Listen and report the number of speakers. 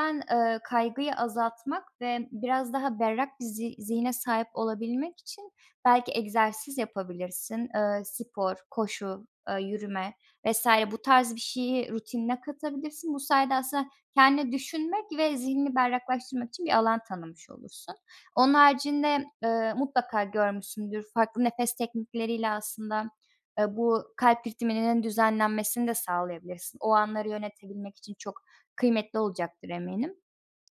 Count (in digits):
1